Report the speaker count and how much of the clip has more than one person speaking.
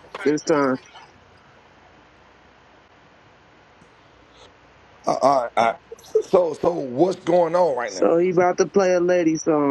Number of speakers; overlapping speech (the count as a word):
two, about 1%